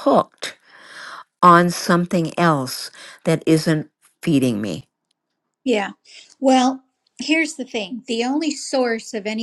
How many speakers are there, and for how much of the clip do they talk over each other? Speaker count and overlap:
two, no overlap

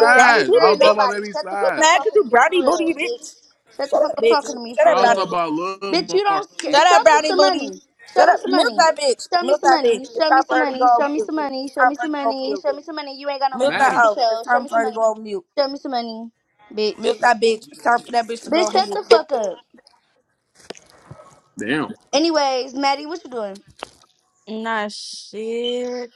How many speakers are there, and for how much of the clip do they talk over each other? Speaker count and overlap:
four, about 42%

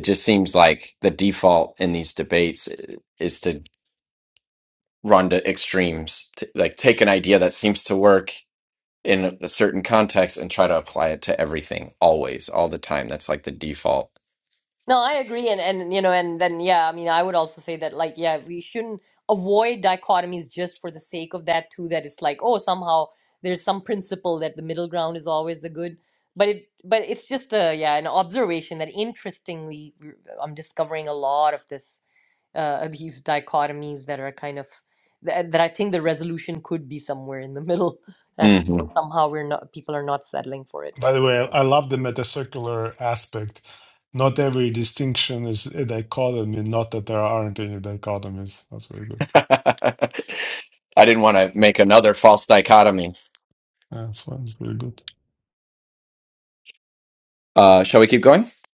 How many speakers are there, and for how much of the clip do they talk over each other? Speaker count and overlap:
three, about 1%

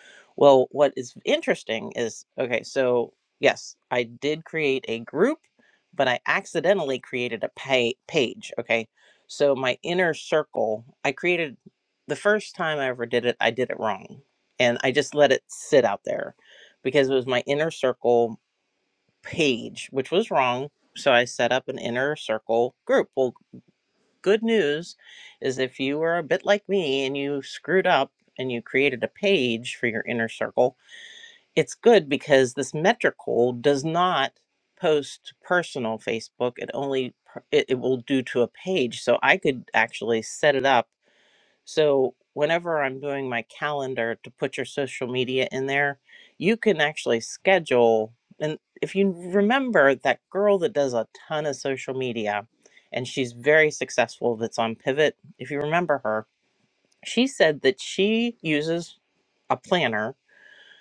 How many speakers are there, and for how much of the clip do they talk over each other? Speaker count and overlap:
one, no overlap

